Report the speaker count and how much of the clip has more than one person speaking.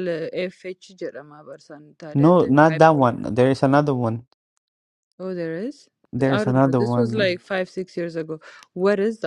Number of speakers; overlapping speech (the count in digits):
2, about 18%